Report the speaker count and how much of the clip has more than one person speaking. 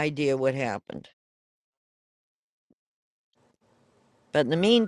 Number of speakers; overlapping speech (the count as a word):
one, no overlap